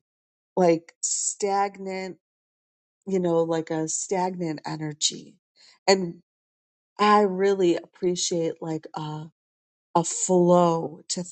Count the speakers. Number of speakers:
one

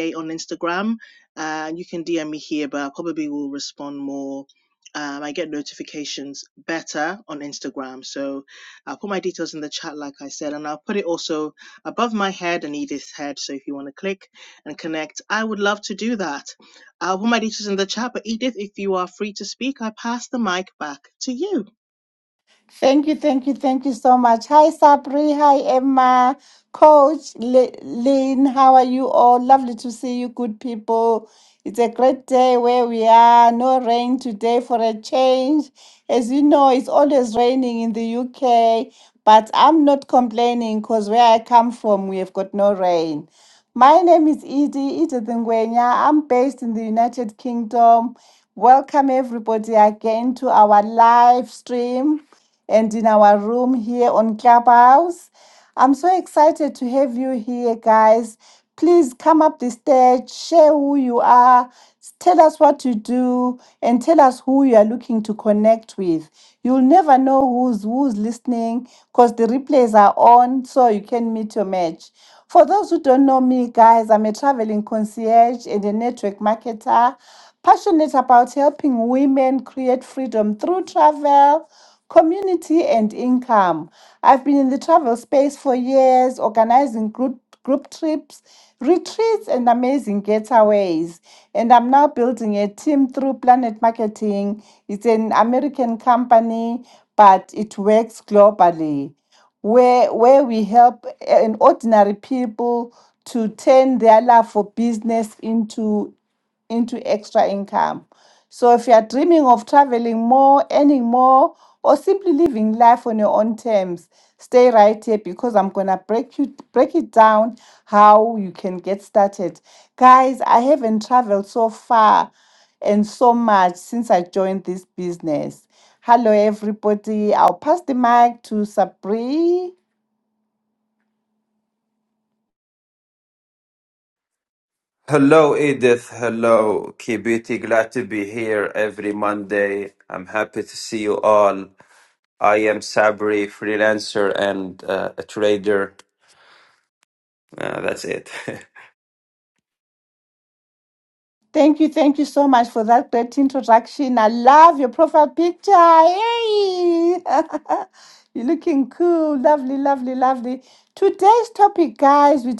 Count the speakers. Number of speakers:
three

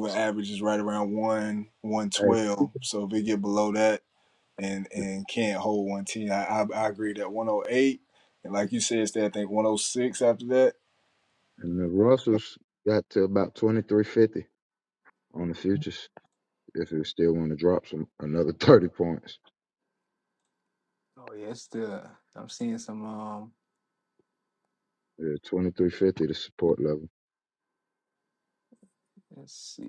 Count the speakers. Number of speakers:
three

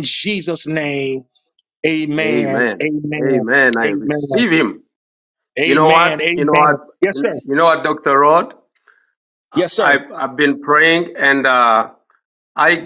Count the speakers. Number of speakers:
two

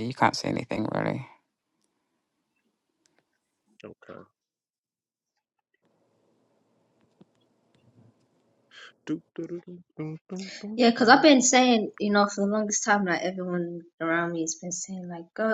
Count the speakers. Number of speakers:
three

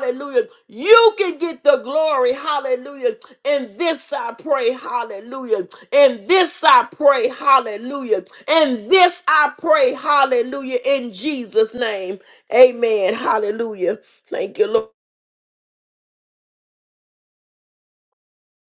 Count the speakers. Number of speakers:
one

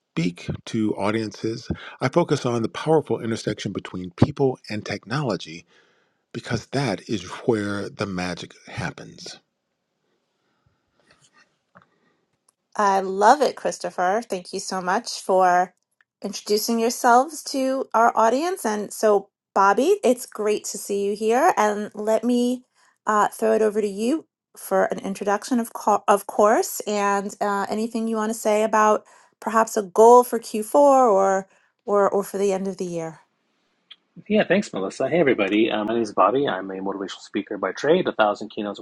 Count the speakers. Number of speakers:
three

